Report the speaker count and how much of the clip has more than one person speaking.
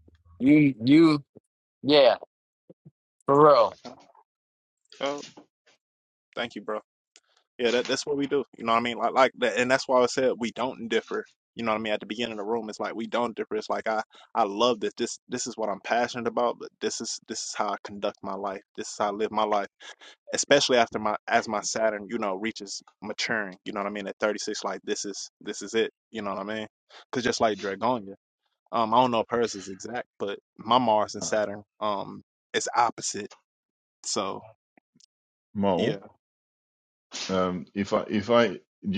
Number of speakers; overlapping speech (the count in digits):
3, about 1%